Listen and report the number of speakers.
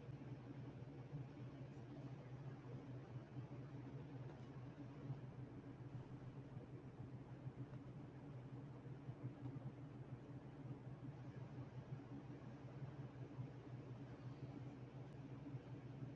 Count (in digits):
0